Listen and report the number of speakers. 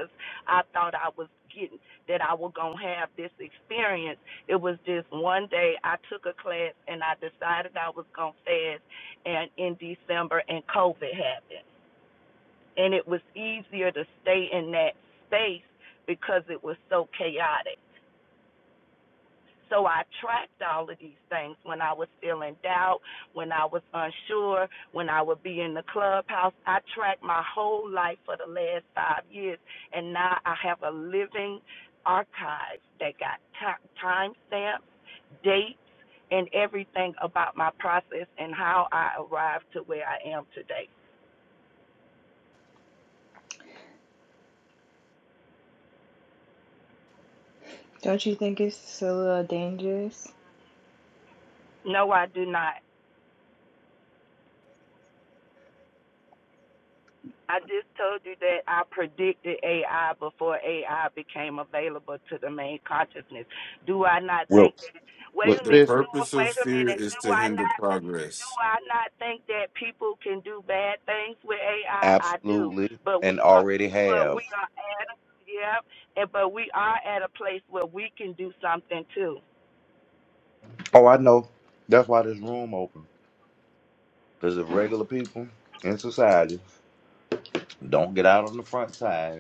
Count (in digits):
4